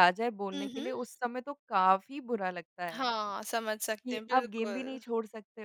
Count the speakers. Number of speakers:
2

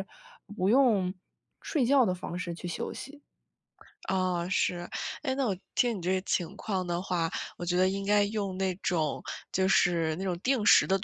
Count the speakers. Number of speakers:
2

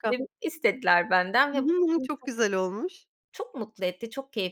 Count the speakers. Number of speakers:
2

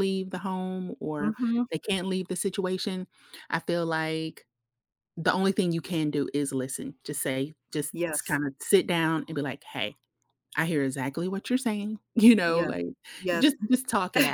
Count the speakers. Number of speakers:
2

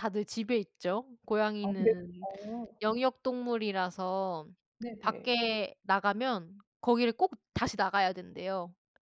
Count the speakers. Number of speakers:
2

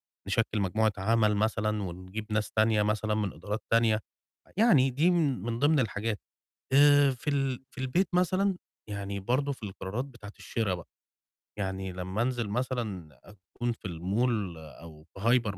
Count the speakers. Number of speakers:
1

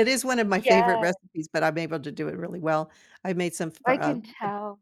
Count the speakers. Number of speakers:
2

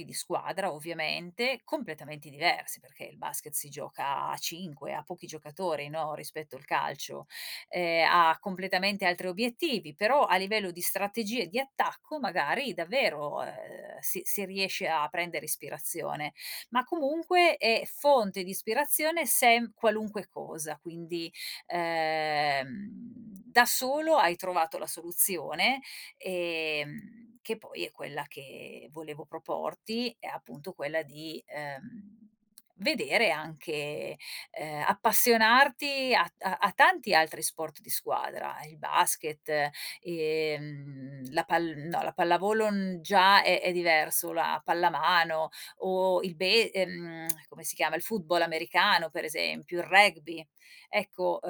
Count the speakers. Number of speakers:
1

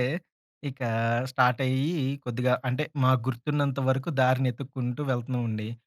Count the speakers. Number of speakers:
1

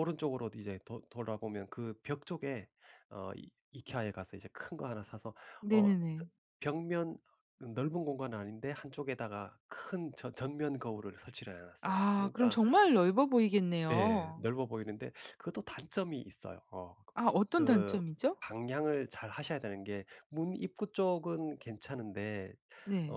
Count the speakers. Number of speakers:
2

